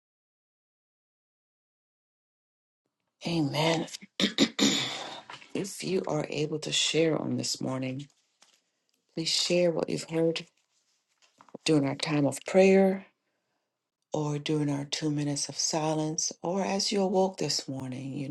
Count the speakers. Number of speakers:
1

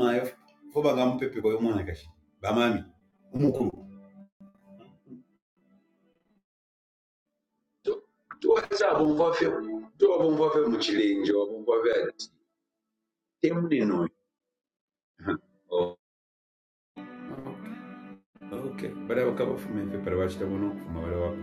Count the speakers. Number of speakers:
1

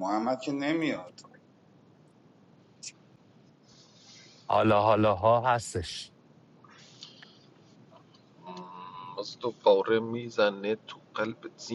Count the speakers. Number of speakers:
3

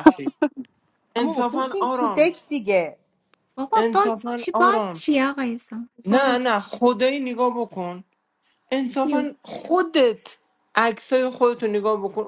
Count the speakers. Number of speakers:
3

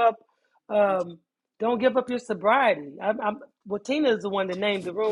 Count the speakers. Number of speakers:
1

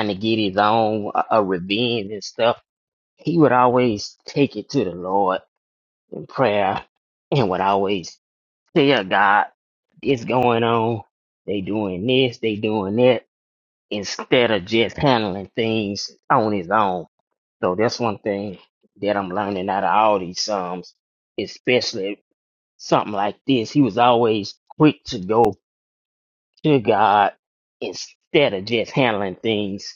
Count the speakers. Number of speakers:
1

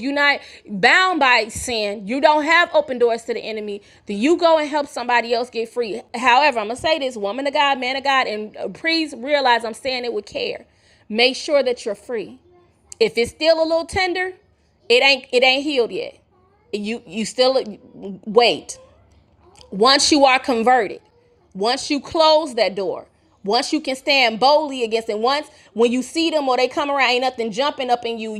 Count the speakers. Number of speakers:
1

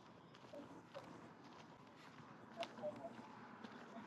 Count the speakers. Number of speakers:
0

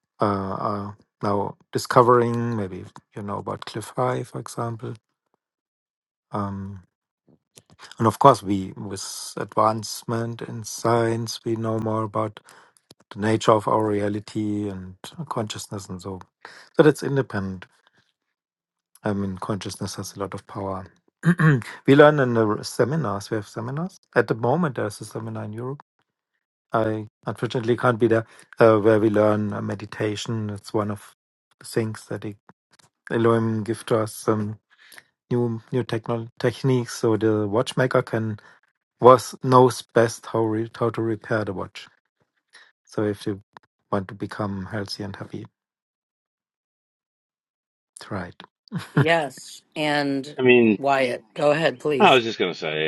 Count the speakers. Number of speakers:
3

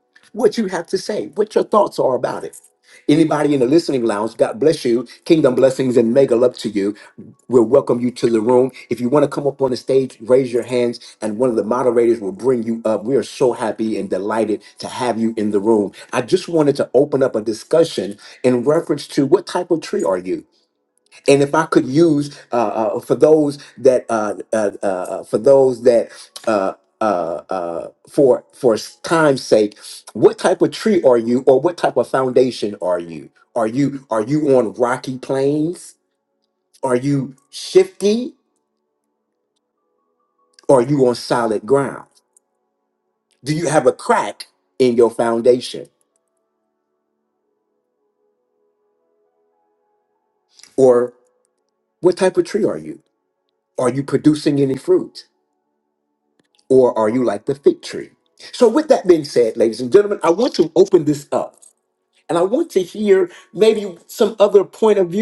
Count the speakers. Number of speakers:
1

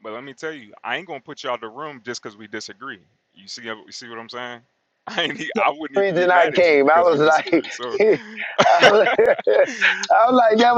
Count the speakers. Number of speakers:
2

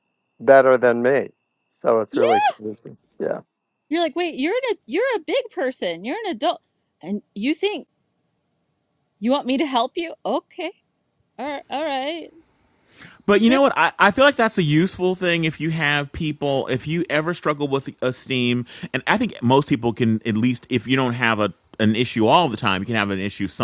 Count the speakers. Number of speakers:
3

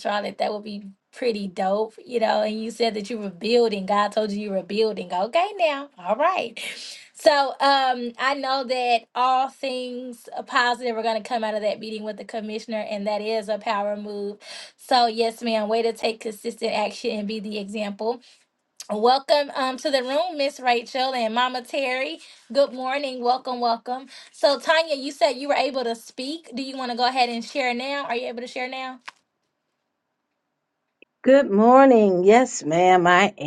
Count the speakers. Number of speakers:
2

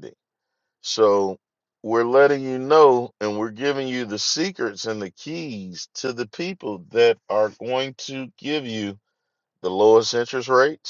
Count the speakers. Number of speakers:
1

